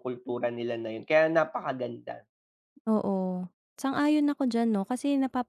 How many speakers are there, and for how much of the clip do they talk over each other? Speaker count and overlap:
2, no overlap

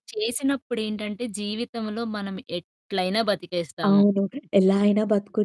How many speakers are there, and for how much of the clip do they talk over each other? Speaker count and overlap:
2, about 4%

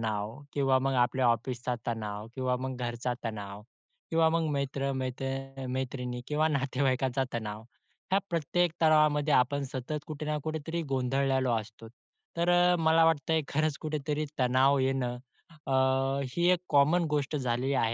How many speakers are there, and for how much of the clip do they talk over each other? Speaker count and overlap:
1, no overlap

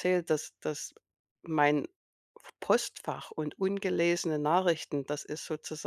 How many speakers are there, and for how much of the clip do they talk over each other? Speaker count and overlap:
1, no overlap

